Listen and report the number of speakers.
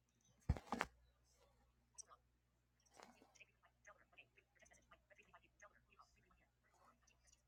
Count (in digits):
0